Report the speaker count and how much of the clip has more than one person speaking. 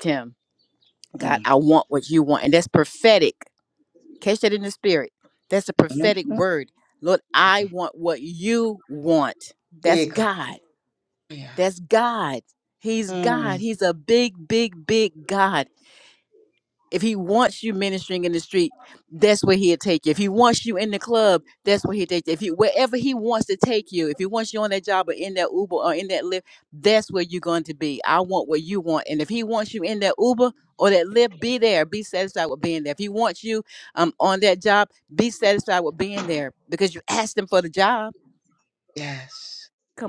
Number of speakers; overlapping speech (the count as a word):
two, about 3%